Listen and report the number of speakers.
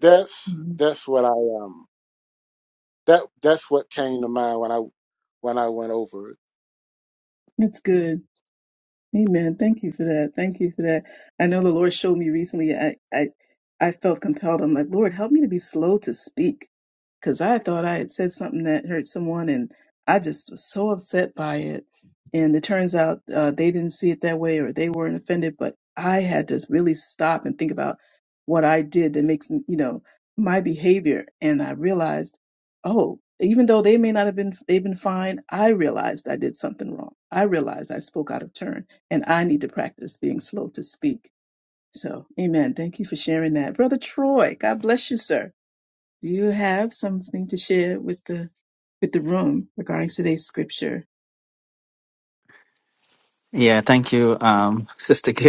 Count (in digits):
3